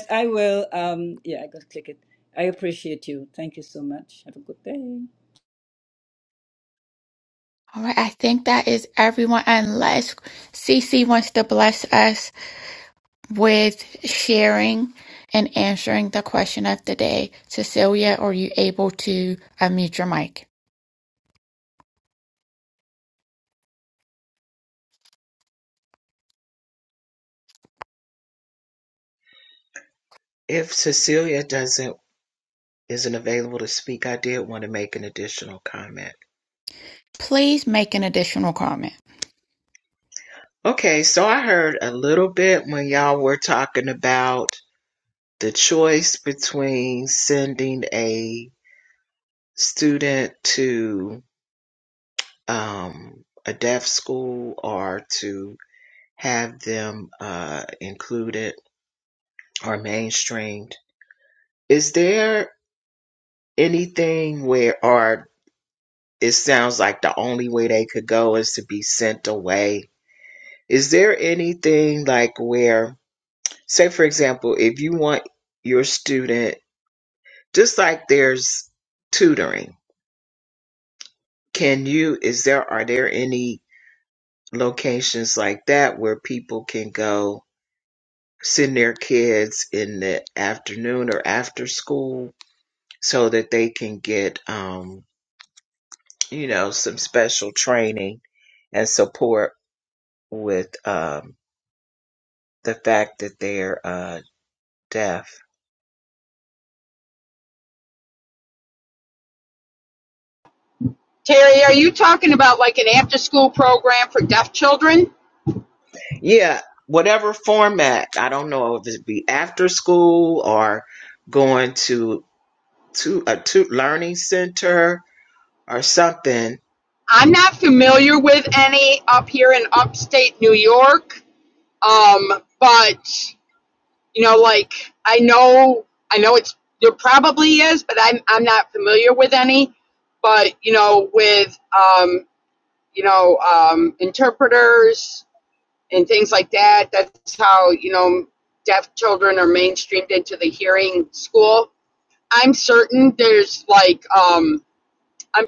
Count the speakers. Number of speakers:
four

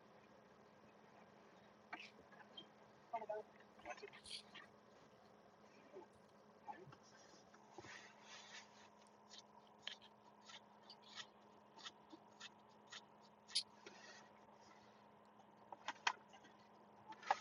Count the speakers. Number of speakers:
zero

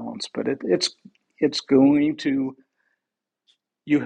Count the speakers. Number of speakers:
one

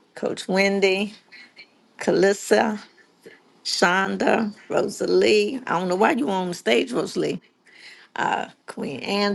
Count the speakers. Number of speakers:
one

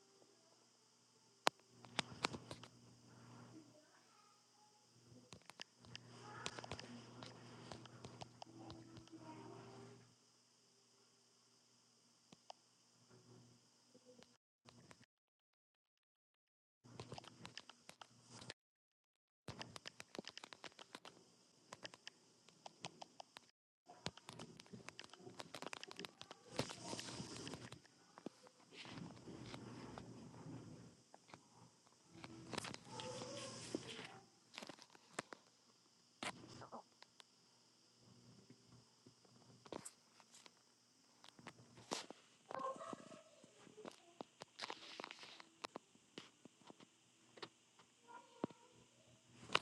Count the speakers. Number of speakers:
zero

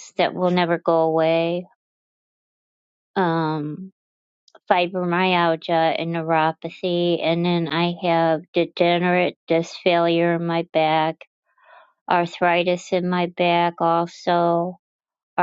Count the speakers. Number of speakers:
one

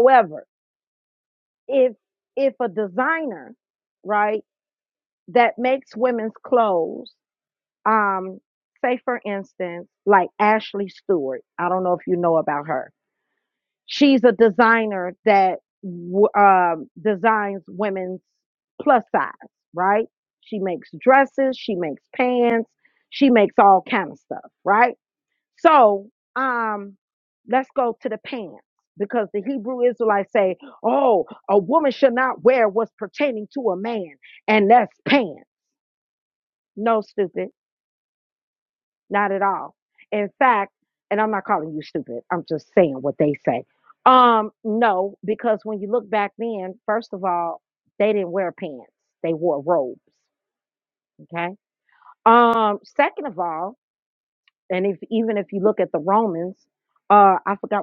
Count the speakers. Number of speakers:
one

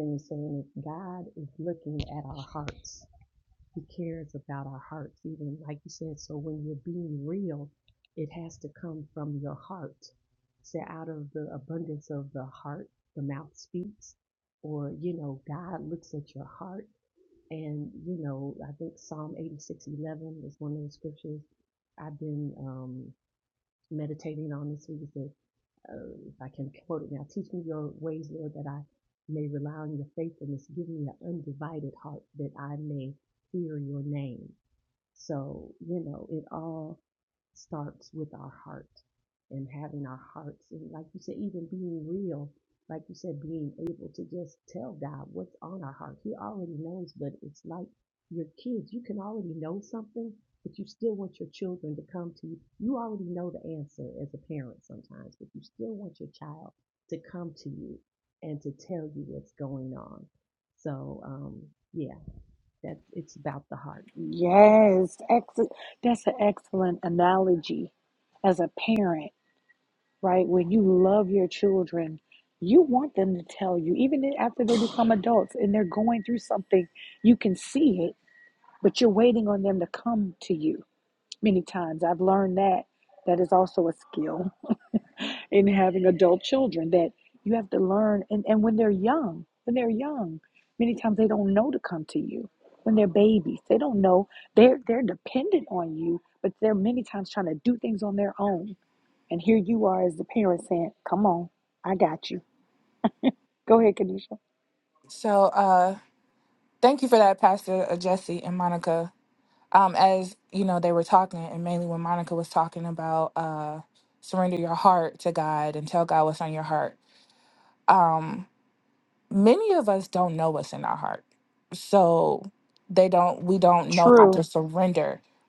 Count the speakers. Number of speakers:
three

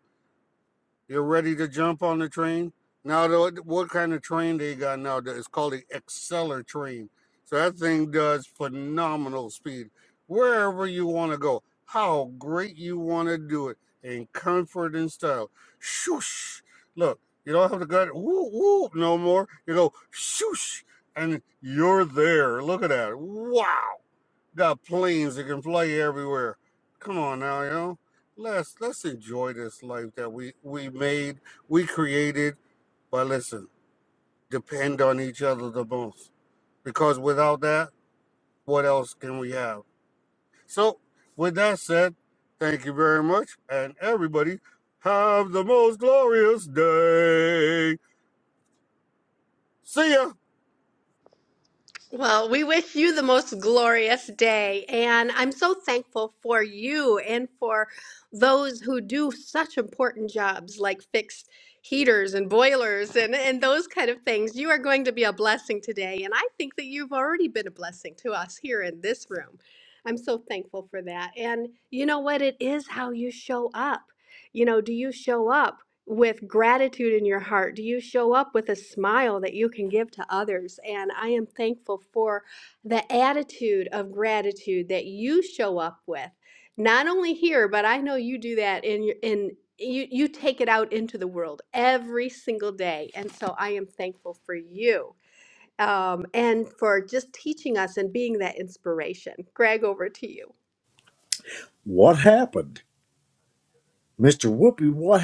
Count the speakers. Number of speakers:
three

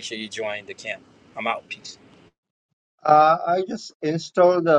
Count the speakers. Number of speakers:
two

